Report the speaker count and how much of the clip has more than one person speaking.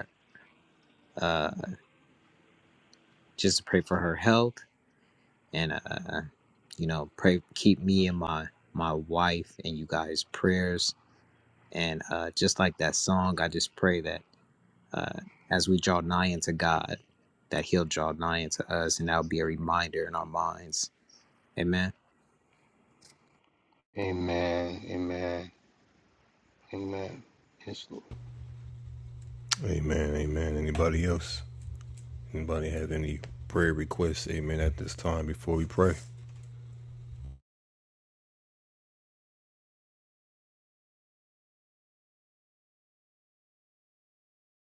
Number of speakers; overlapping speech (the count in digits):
3, no overlap